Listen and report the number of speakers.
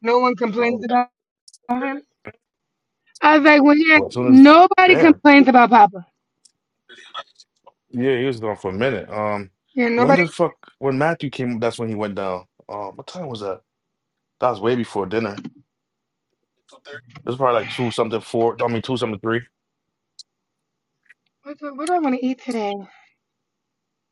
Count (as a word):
two